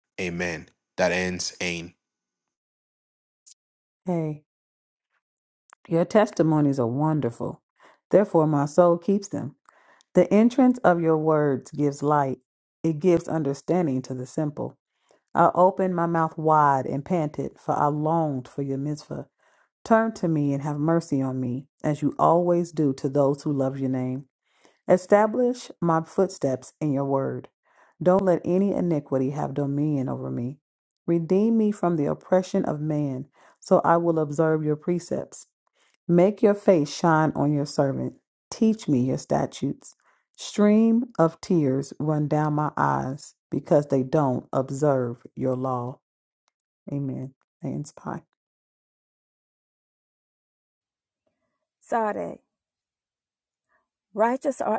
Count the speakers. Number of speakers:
three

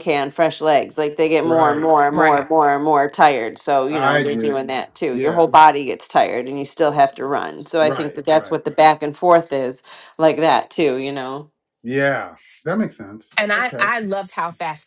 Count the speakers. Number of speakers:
three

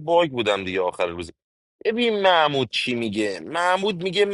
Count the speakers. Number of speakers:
one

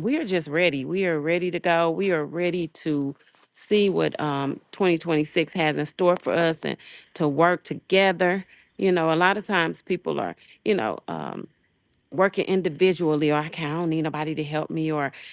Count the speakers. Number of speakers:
one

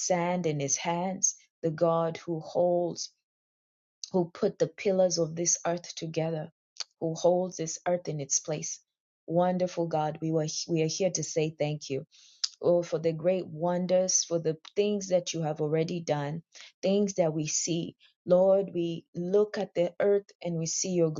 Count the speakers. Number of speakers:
one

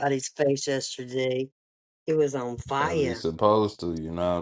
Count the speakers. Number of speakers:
two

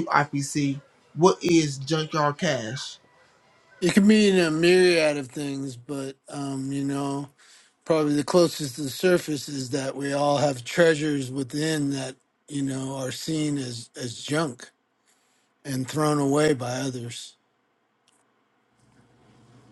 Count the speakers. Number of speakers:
two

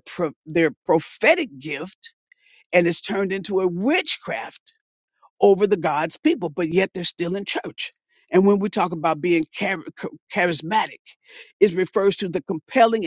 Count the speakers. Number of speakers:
one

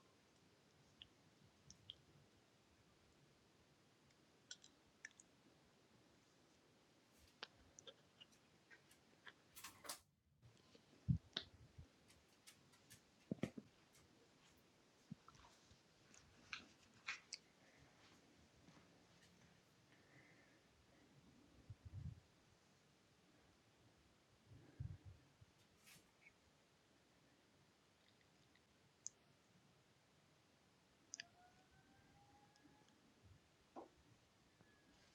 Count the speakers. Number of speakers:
zero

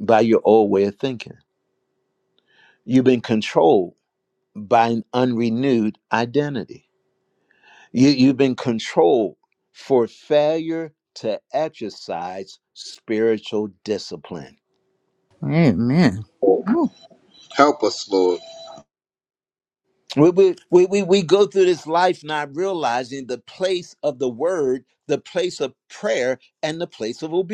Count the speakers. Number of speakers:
three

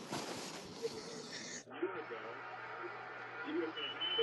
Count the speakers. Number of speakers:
zero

